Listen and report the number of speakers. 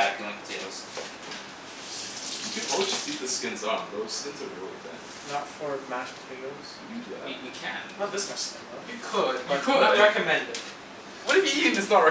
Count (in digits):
4